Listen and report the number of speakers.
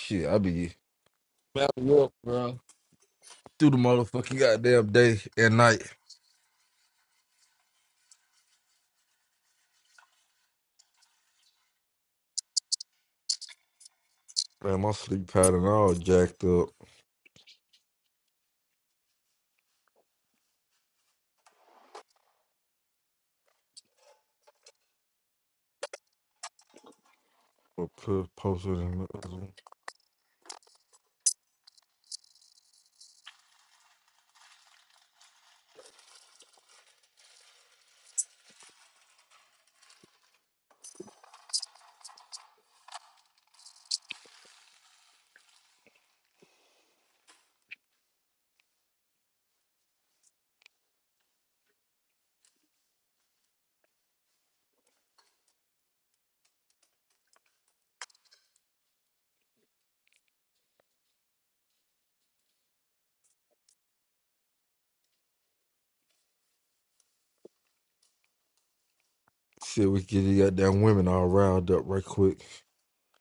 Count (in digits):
1